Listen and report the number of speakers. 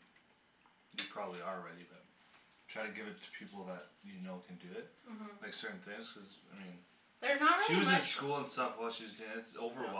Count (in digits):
2